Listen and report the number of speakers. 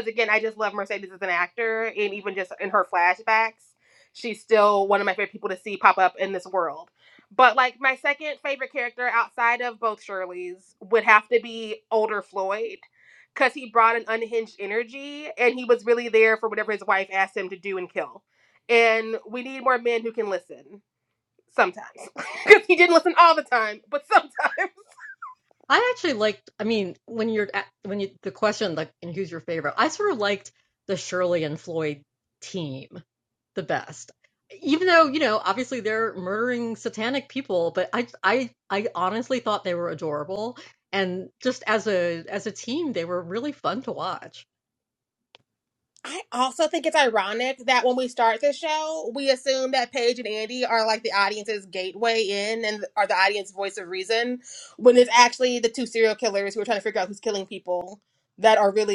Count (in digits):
2